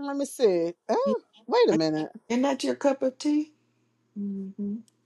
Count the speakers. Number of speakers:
2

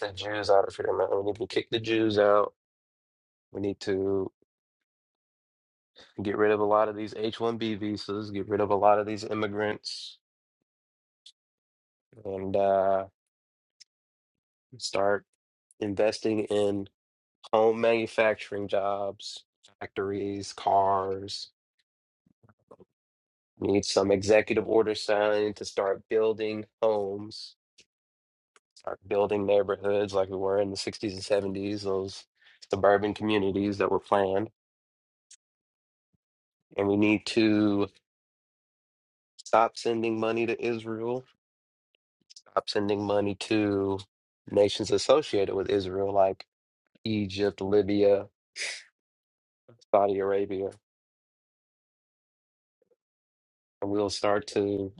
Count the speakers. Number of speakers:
1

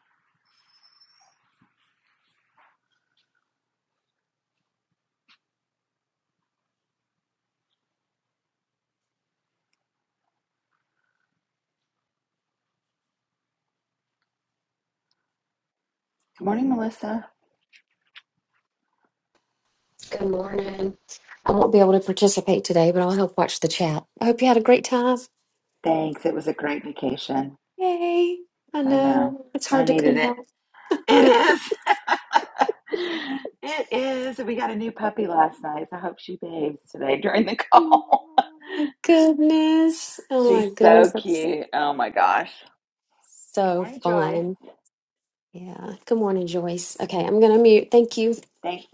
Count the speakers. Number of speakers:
2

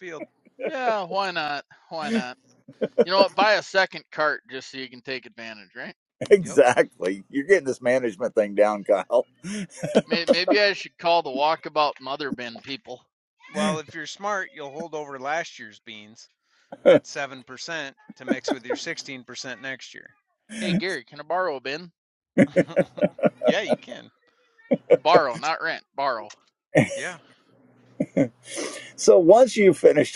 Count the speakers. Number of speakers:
3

